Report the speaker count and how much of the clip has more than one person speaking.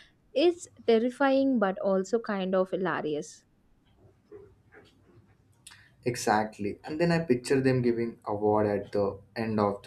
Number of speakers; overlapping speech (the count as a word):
two, no overlap